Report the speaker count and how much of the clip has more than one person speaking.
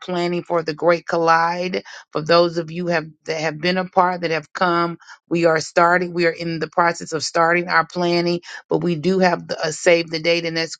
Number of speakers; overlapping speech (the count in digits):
1, no overlap